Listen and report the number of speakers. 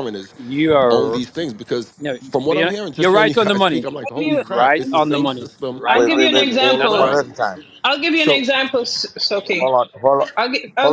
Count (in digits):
4